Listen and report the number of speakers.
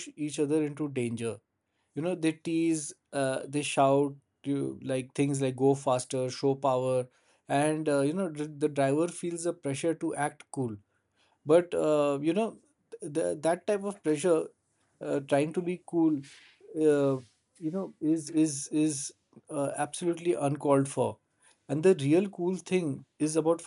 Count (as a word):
one